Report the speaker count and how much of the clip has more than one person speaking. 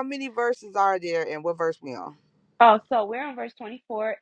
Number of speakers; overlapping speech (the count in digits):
2, no overlap